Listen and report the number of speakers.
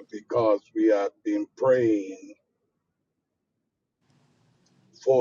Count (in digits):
1